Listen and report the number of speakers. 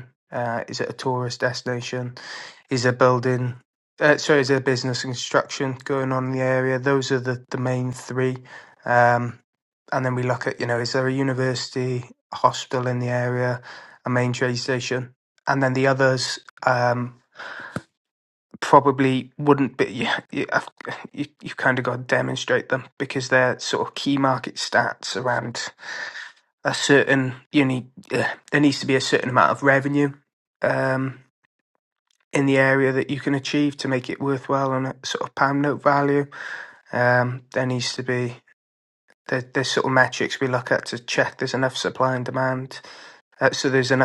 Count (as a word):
one